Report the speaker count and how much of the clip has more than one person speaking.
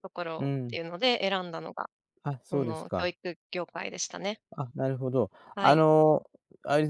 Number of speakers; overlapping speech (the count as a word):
two, about 16%